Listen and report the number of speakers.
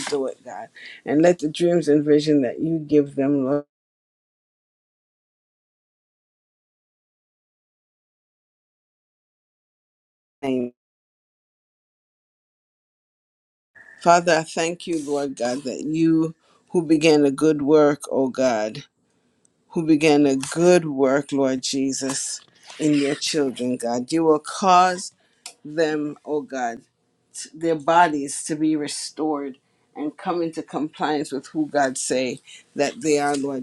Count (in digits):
1